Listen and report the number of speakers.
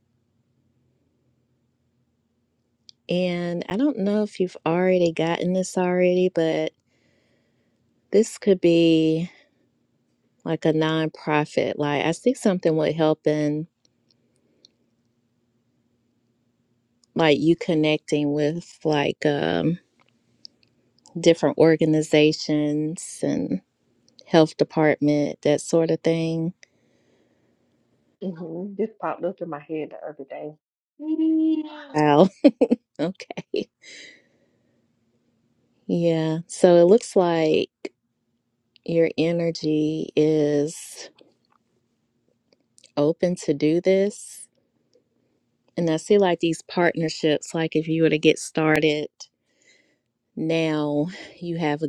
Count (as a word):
two